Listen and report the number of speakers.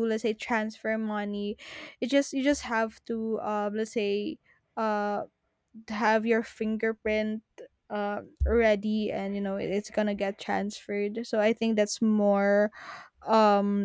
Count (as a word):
one